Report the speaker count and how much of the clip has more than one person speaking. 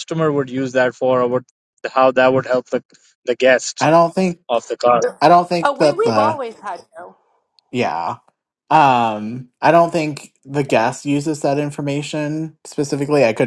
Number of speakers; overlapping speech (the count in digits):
3, about 6%